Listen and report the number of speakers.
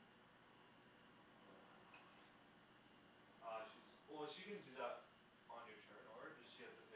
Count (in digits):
1